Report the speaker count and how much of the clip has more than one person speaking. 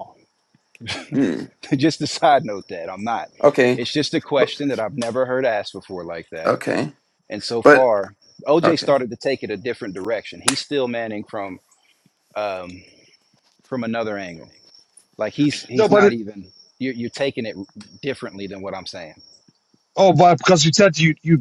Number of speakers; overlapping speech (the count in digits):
3, about 6%